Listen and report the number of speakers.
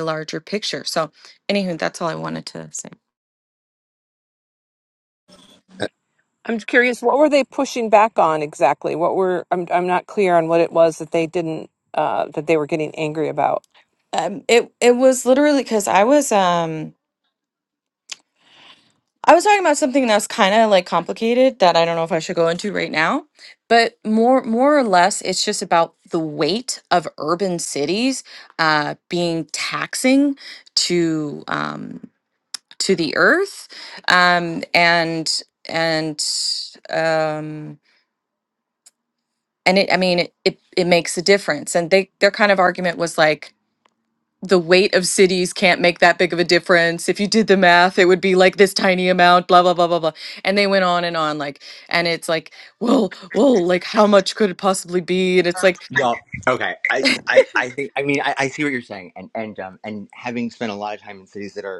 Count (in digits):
3